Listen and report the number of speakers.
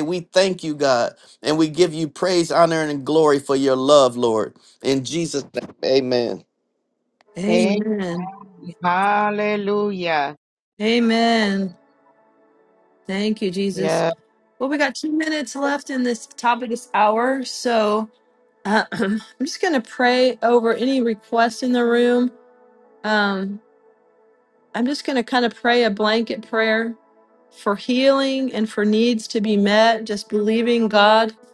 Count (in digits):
3